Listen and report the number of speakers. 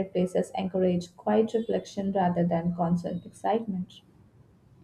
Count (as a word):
one